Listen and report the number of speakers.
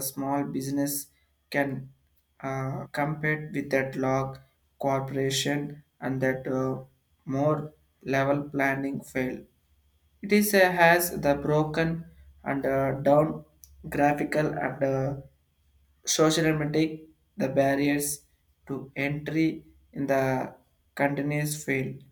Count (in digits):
1